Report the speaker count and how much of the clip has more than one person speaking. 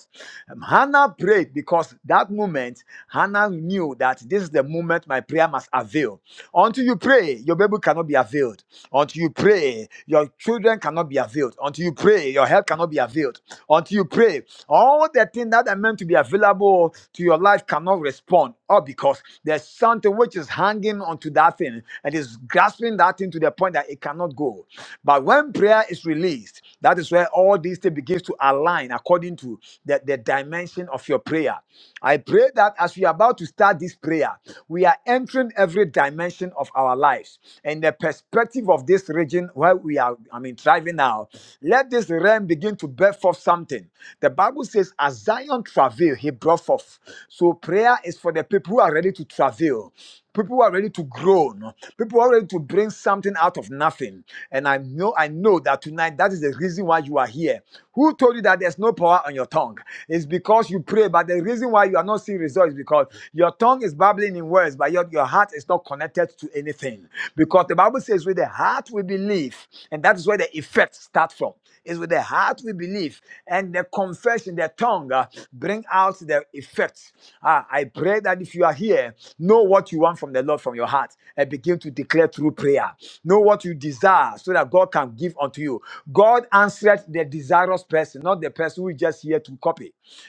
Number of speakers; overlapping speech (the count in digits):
1, no overlap